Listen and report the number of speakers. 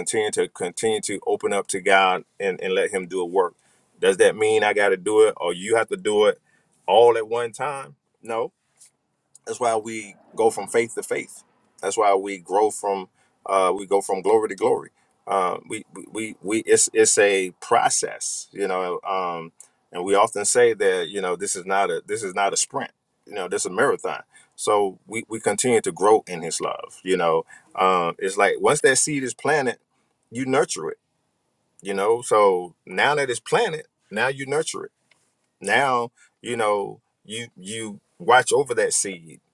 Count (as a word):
one